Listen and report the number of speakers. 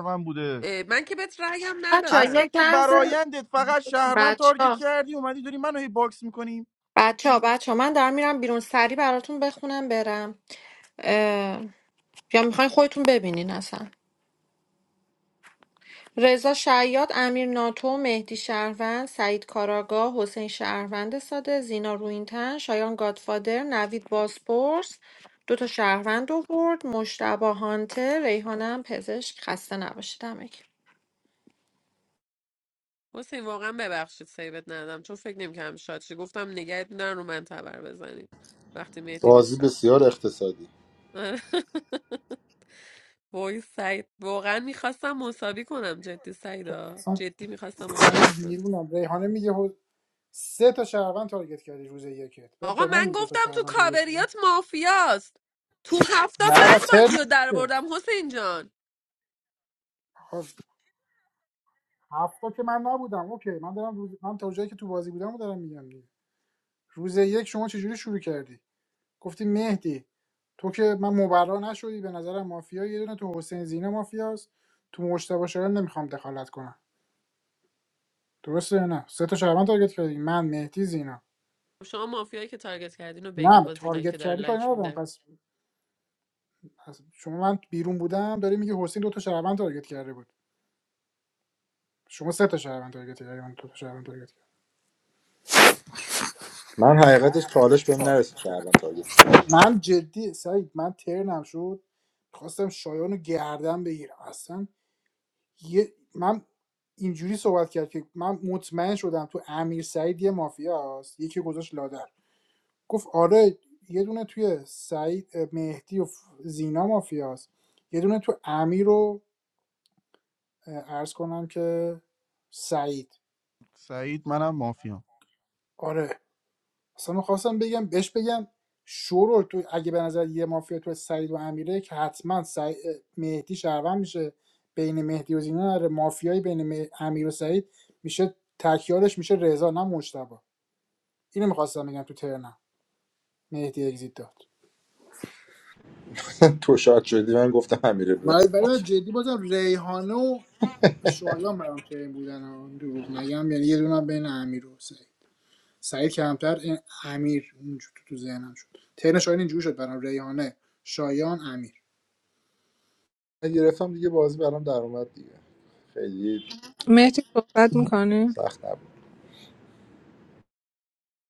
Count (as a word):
six